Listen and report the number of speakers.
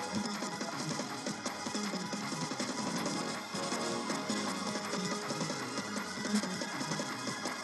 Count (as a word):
zero